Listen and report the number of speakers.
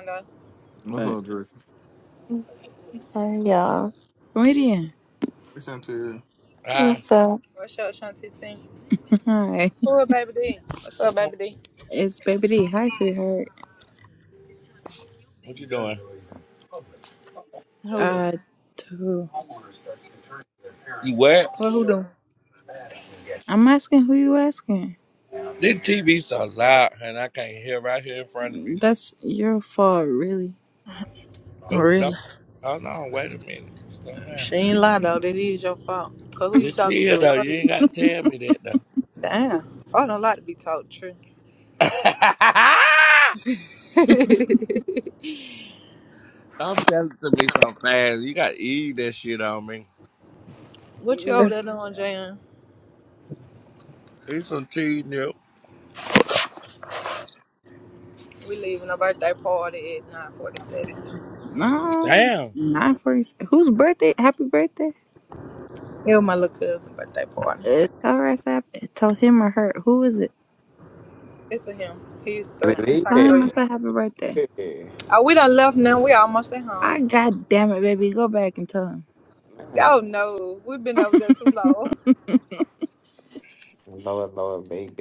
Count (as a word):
six